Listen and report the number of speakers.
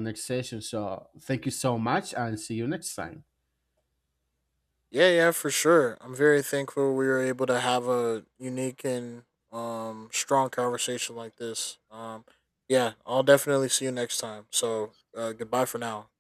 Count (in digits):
2